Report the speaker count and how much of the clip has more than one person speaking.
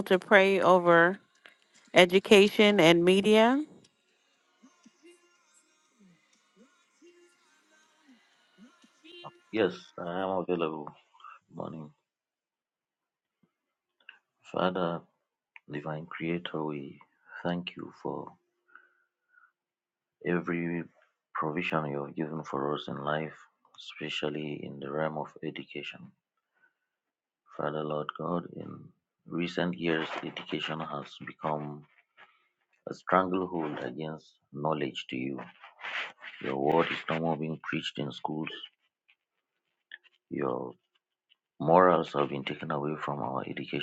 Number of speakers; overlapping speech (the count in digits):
2, no overlap